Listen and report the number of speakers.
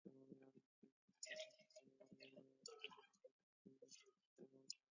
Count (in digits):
0